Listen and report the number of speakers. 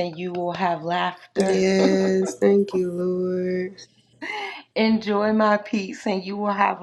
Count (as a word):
two